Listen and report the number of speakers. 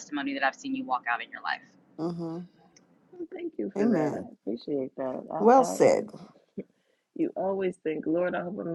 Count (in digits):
3